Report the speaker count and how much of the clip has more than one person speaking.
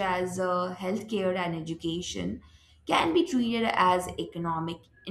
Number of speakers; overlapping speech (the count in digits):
1, no overlap